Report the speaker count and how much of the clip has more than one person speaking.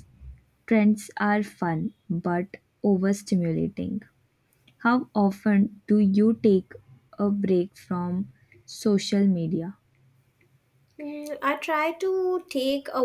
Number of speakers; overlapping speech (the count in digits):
2, no overlap